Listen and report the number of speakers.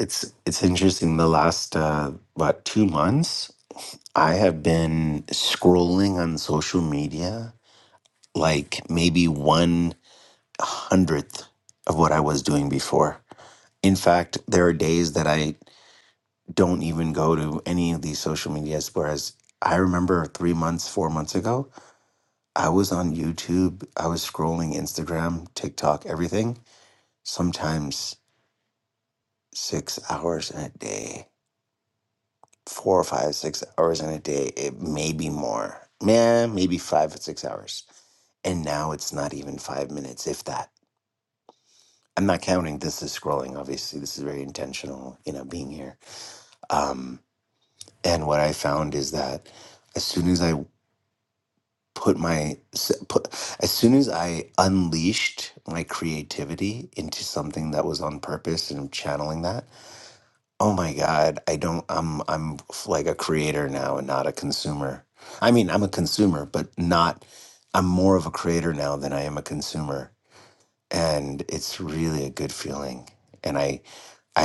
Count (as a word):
one